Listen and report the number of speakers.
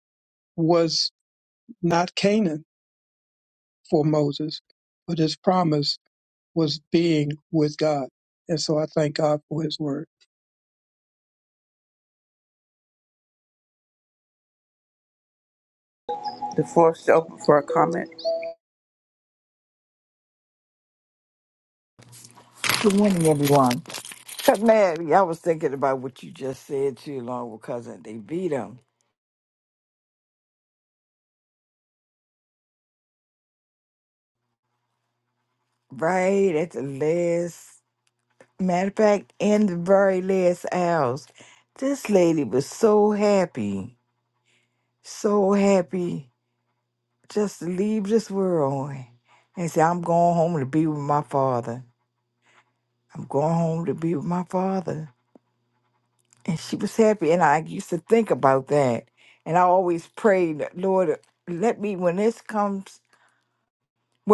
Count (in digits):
3